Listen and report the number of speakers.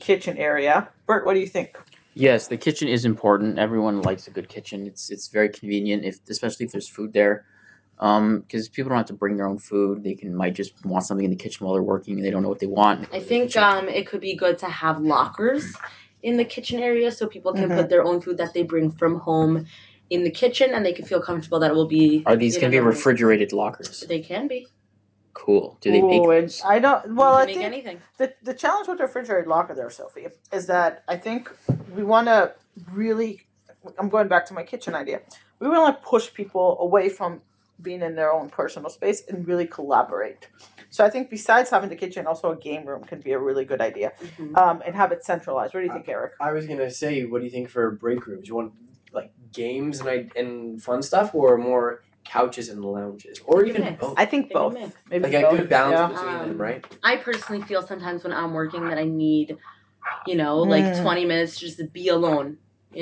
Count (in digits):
4